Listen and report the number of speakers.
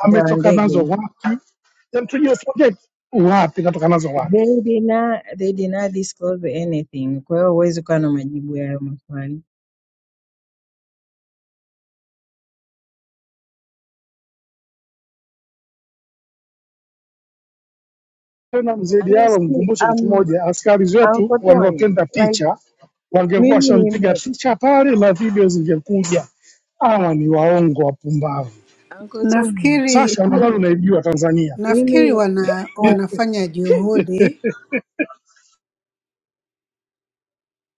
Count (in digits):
3